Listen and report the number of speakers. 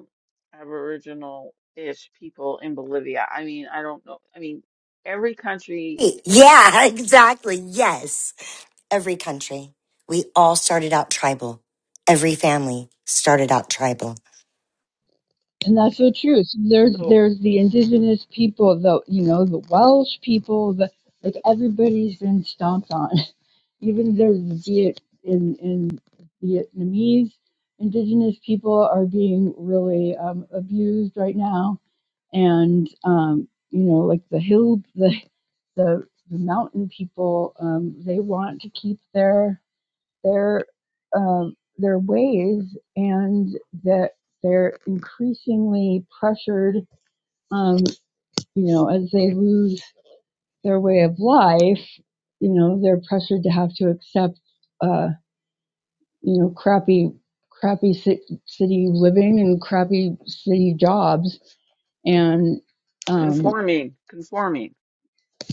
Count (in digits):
3